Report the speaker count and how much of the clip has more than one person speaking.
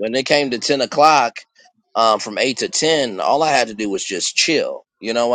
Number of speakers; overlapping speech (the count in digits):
1, no overlap